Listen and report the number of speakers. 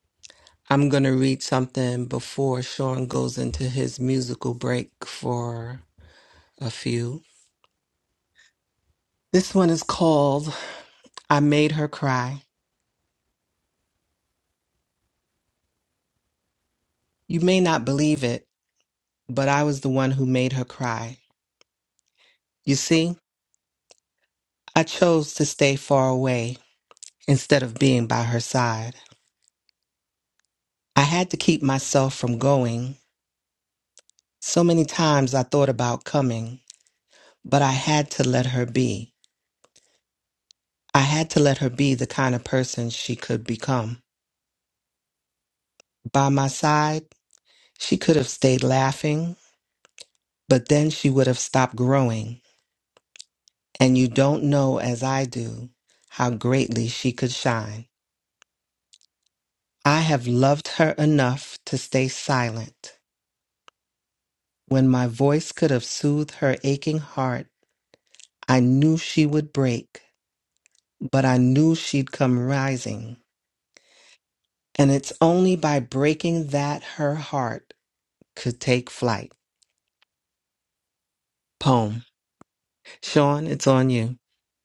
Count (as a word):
one